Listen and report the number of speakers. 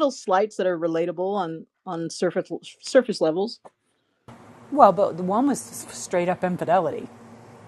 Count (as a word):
two